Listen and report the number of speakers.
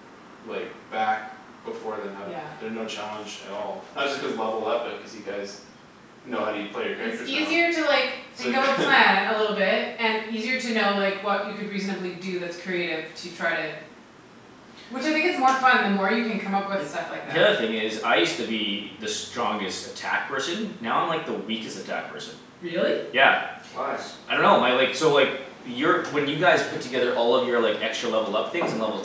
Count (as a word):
three